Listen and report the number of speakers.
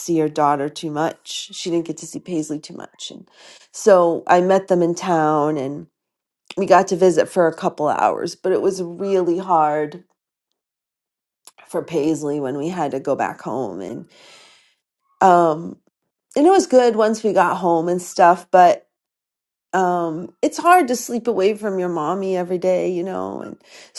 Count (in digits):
1